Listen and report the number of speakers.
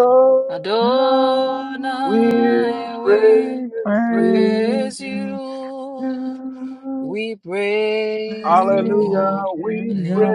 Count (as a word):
three